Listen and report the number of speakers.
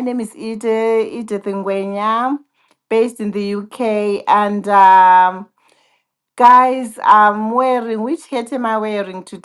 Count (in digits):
1